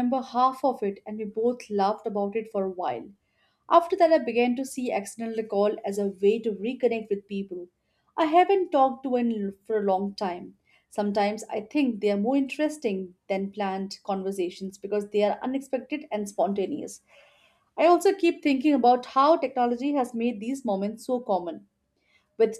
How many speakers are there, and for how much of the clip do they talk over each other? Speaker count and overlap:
1, no overlap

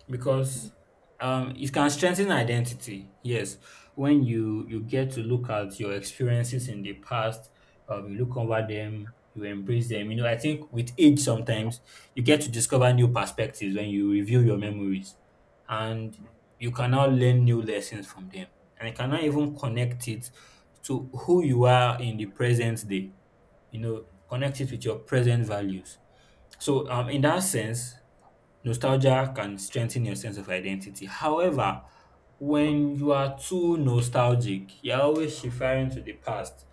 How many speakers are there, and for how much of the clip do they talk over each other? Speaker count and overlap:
1, no overlap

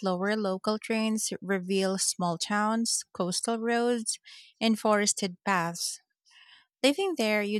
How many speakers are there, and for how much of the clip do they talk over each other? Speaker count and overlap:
1, no overlap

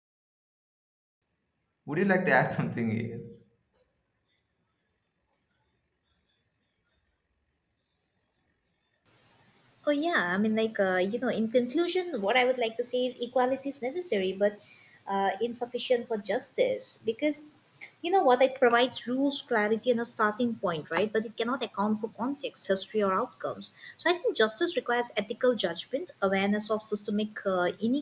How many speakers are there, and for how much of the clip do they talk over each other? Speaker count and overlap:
2, no overlap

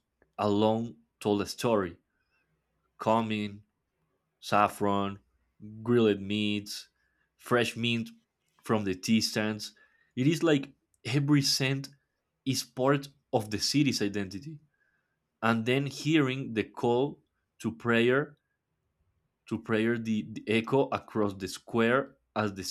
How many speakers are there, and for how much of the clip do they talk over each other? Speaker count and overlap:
1, no overlap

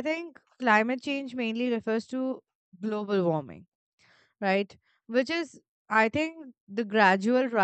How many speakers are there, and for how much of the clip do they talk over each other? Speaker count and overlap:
1, no overlap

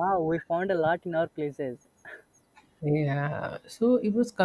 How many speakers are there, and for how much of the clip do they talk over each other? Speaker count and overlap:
2, no overlap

